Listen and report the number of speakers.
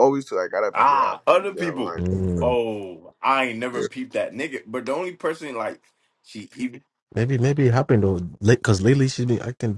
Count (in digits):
3